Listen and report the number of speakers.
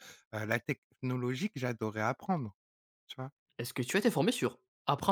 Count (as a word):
two